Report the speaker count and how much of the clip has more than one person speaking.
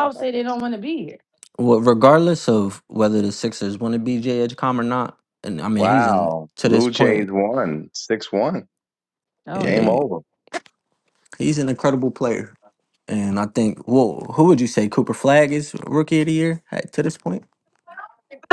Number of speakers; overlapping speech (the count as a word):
three, about 11%